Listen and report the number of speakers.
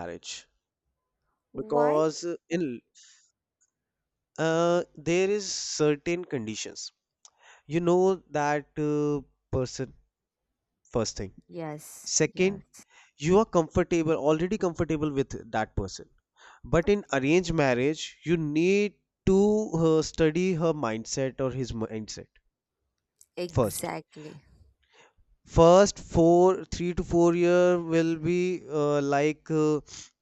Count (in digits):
2